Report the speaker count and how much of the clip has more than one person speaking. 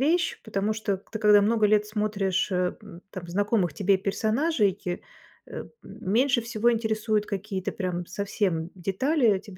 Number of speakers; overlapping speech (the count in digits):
1, no overlap